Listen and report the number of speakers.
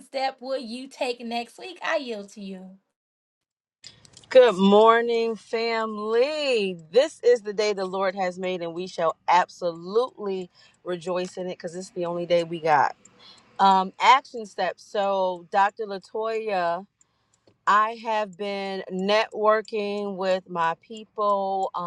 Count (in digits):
2